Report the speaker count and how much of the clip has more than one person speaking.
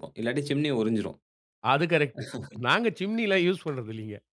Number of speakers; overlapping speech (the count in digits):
2, no overlap